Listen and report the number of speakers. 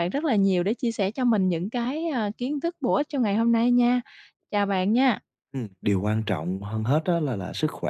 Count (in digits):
2